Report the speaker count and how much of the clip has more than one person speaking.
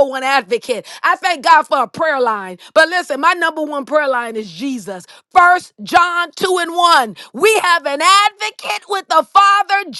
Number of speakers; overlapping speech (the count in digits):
1, no overlap